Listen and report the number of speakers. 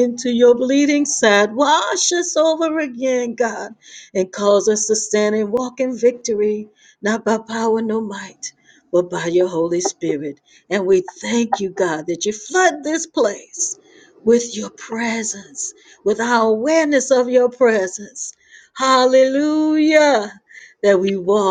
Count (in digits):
1